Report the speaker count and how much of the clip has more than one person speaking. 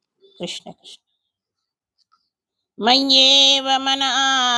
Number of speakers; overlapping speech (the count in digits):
1, no overlap